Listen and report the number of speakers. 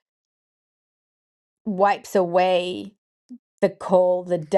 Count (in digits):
1